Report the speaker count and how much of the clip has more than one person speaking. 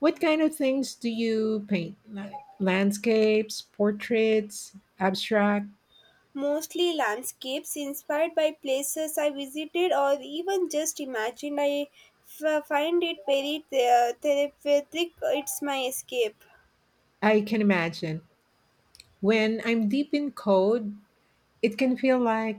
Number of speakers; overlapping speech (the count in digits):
2, no overlap